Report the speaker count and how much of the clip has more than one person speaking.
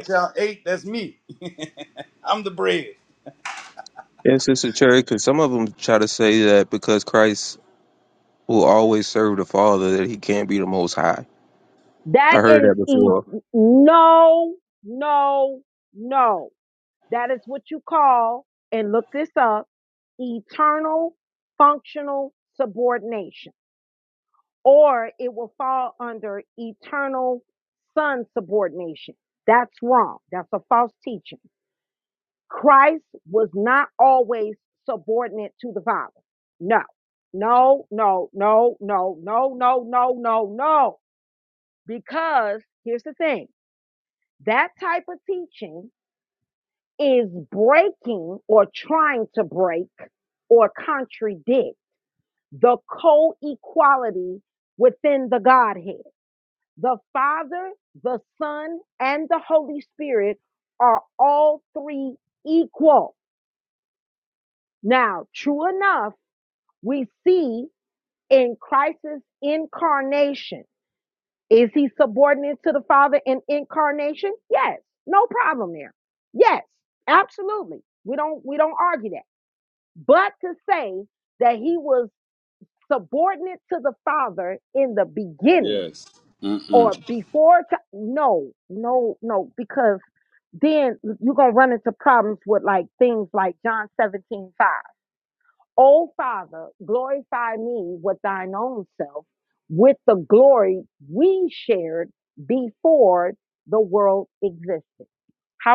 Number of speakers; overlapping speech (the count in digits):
3, about 1%